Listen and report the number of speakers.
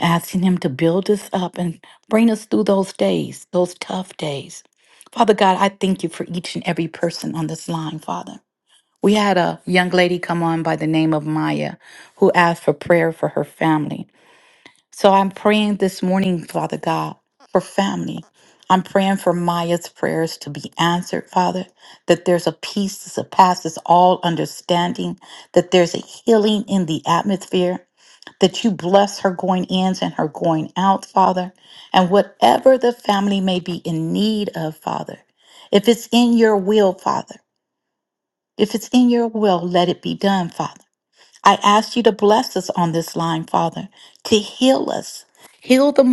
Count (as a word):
one